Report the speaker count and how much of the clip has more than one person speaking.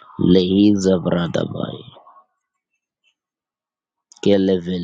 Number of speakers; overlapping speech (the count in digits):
1, no overlap